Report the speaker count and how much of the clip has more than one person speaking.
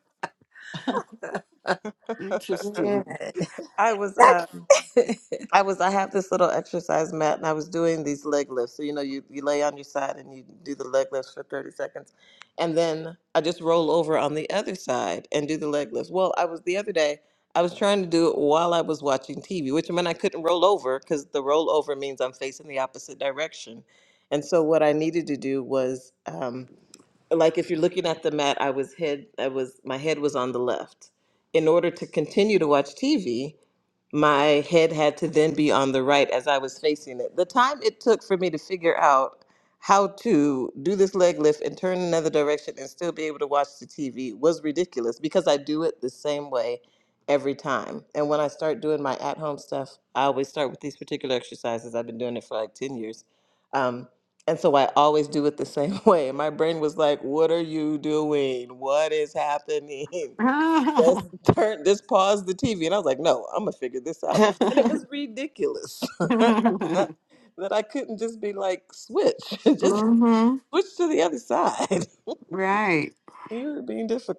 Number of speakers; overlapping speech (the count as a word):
three, about 2%